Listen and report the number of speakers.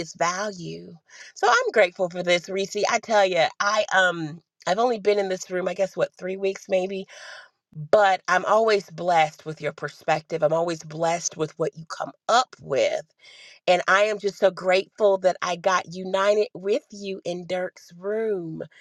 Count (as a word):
one